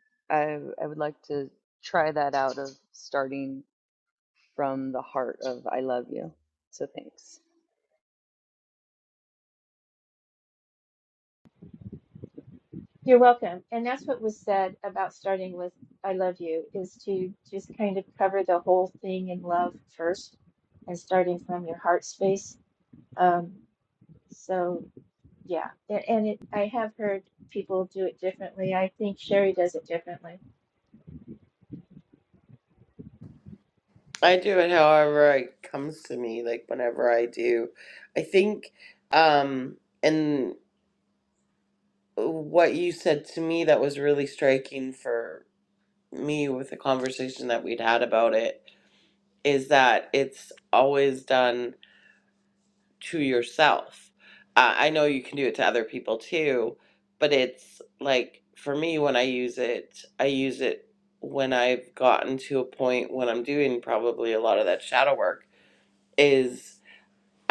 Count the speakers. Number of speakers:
3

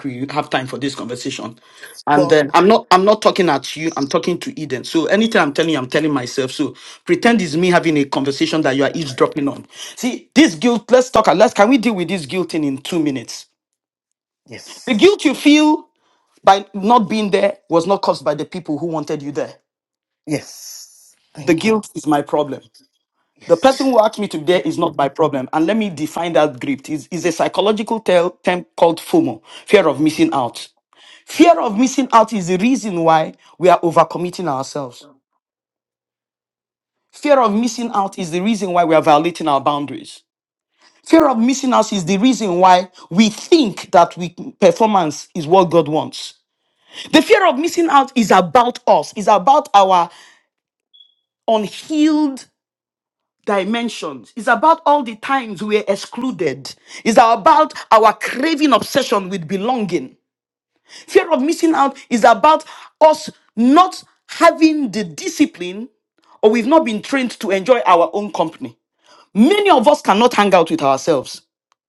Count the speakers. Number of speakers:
2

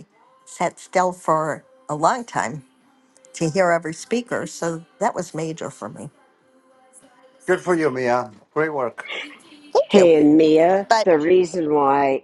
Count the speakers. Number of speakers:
3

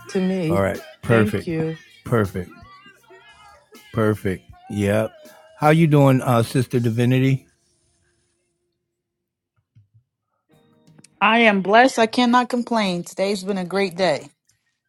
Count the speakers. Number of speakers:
3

